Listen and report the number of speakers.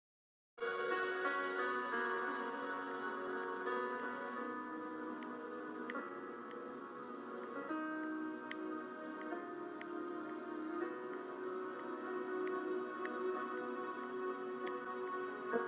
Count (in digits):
0